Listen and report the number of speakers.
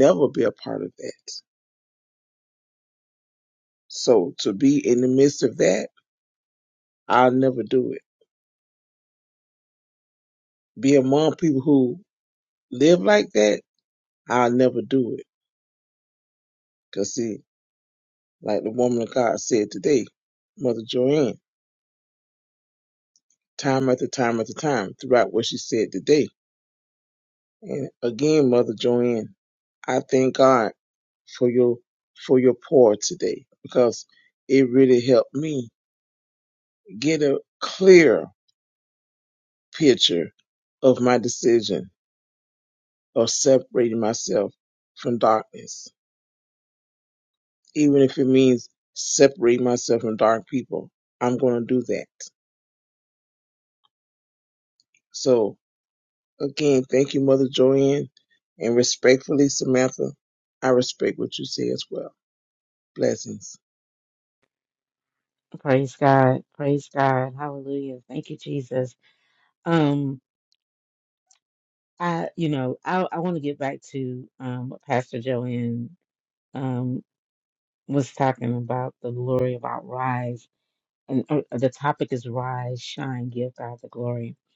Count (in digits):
2